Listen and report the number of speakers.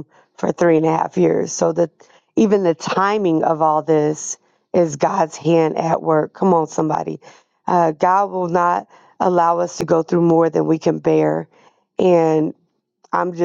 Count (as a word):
one